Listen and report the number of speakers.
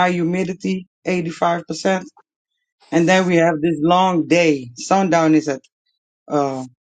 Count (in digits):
1